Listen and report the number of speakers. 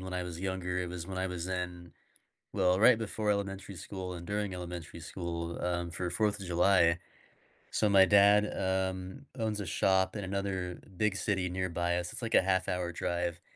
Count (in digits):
1